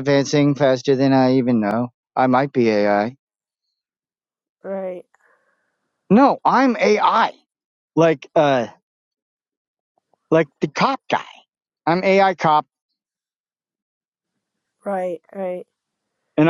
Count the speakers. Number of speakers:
two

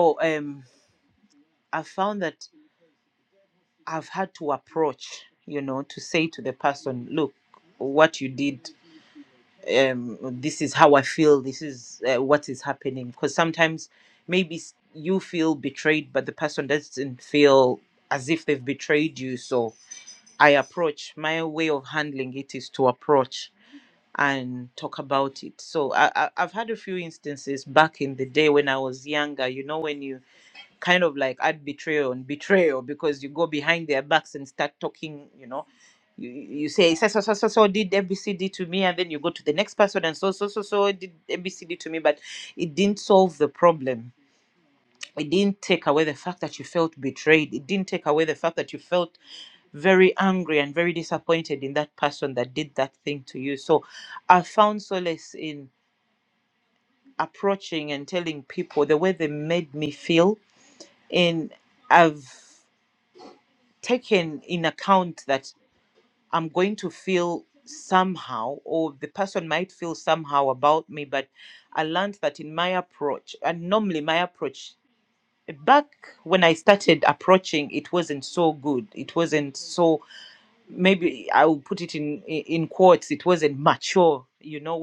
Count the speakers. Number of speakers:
one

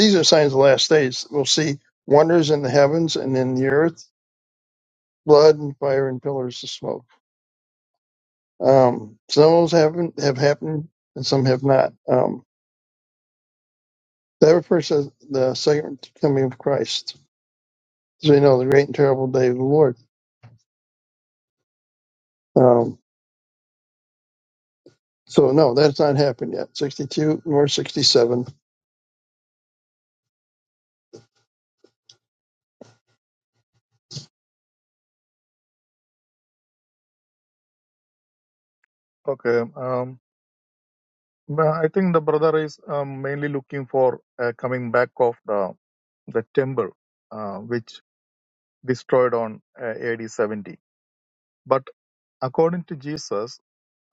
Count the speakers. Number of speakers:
two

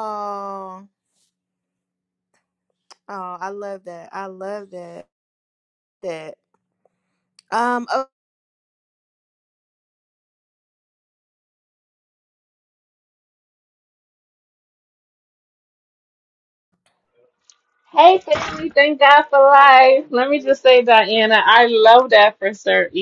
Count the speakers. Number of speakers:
two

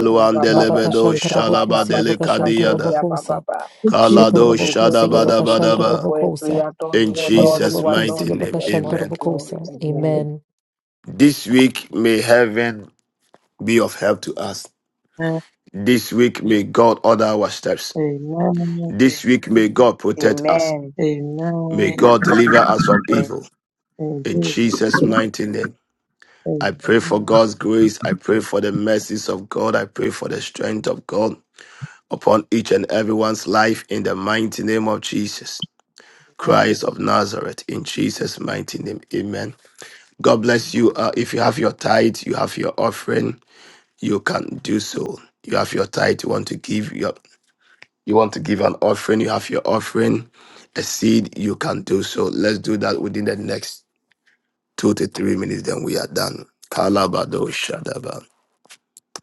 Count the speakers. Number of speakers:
four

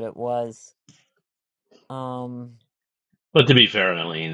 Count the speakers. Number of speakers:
two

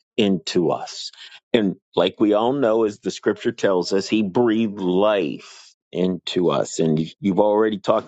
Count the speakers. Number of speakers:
one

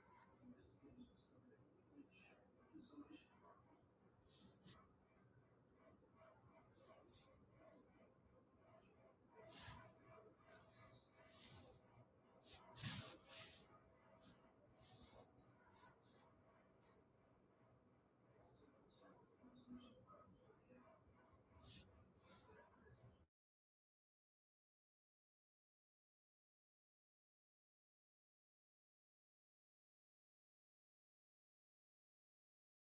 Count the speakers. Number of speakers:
zero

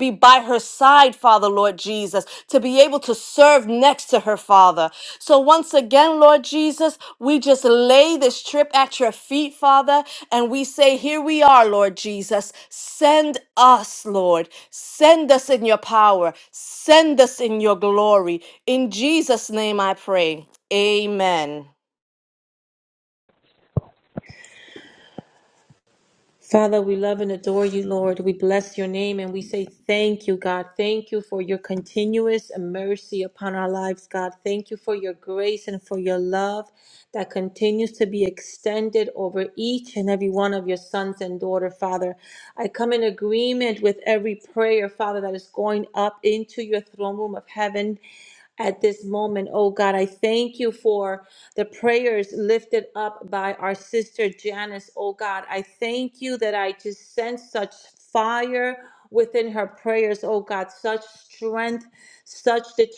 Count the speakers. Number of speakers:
two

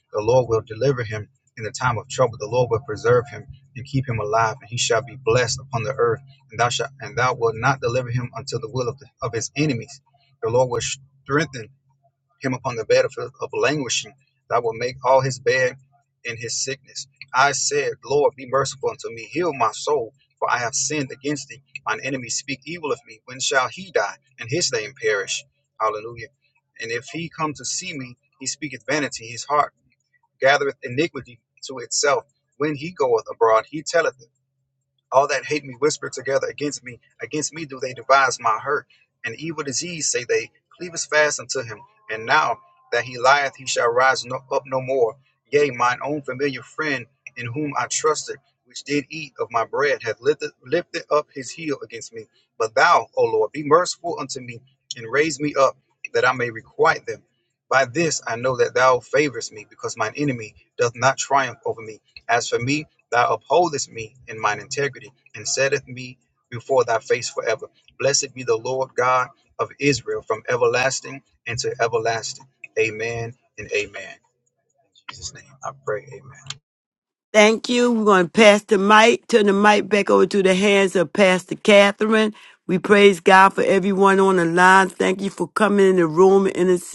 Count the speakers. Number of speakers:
two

